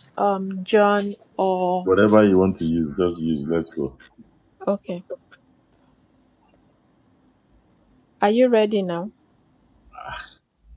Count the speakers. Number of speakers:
2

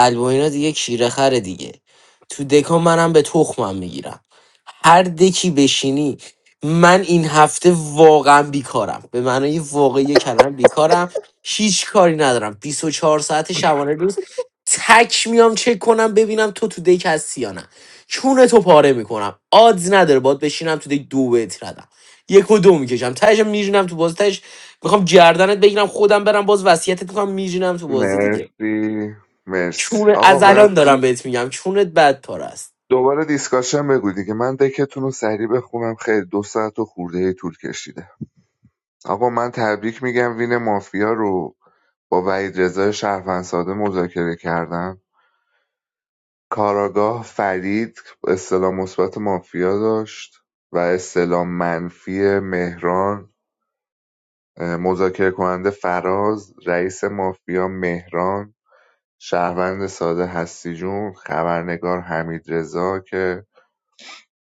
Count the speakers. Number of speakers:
2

